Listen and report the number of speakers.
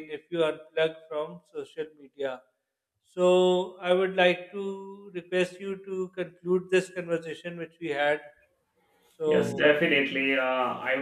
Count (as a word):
two